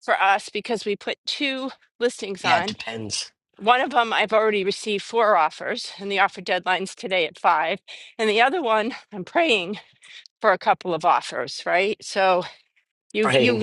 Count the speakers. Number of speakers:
two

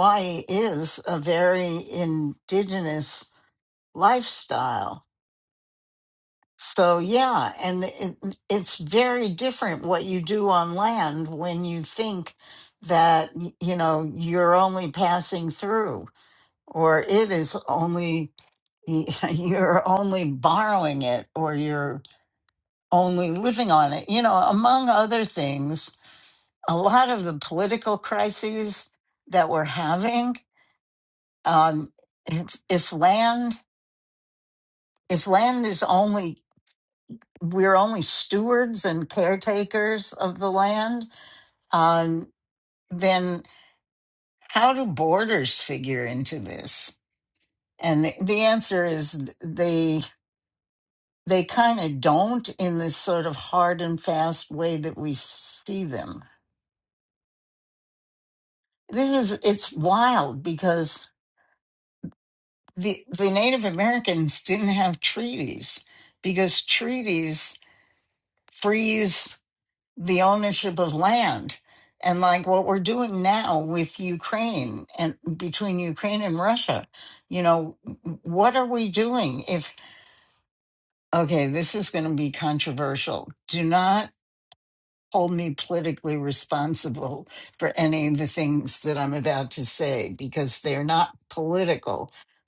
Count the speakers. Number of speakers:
one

